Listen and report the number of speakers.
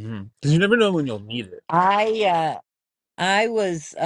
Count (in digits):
2